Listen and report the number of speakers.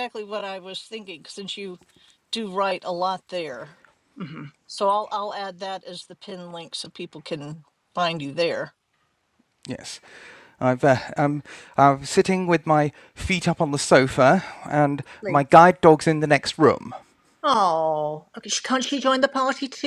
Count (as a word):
three